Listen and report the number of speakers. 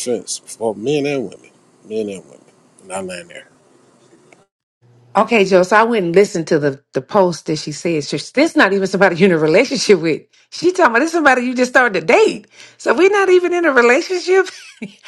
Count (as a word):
two